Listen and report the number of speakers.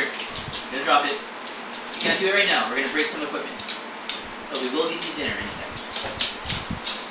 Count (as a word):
one